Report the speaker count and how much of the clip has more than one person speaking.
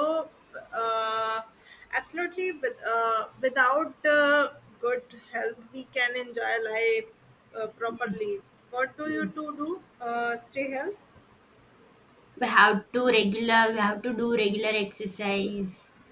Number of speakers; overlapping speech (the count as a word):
two, about 4%